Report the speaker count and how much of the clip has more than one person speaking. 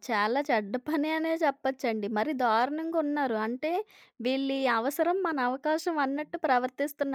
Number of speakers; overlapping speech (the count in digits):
1, no overlap